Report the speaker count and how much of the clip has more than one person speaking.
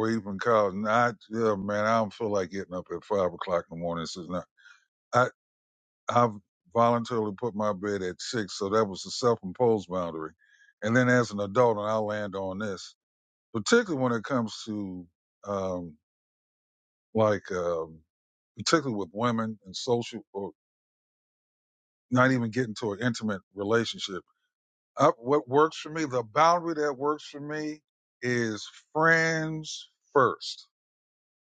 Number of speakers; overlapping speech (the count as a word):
one, no overlap